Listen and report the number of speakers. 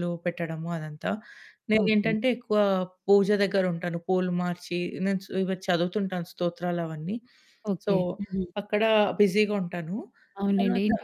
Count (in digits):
2